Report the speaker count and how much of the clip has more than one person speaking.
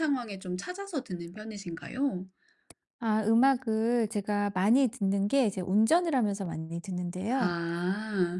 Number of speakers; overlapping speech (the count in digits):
2, about 2%